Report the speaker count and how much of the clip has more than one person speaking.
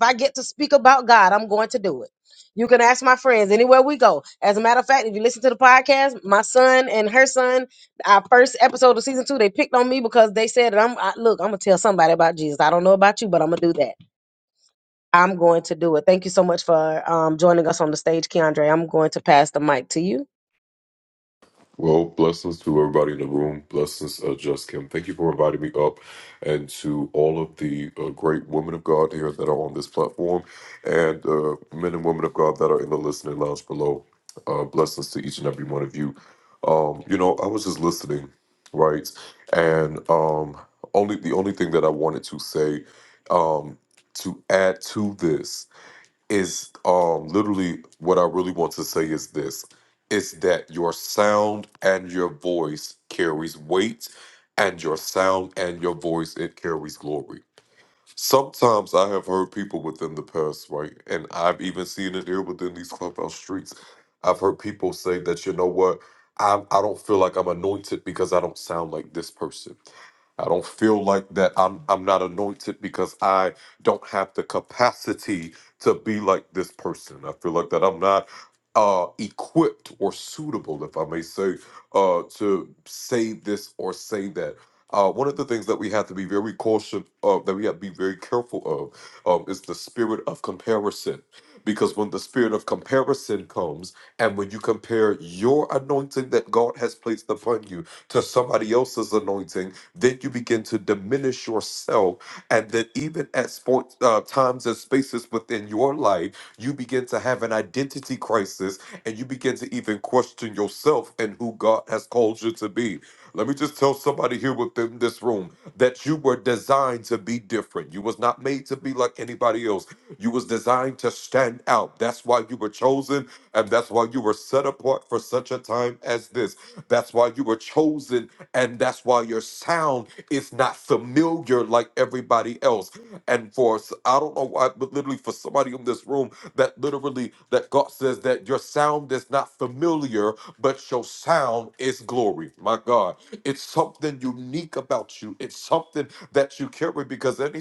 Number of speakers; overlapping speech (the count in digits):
2, no overlap